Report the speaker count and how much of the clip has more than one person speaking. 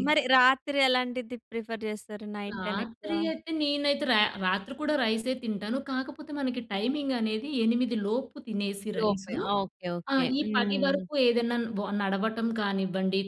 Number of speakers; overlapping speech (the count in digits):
2, about 16%